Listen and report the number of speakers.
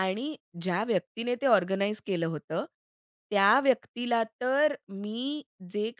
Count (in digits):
1